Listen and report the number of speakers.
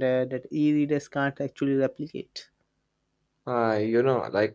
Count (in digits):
2